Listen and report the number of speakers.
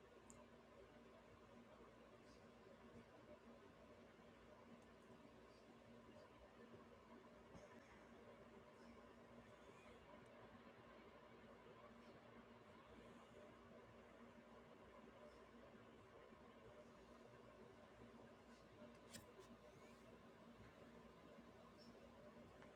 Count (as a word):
zero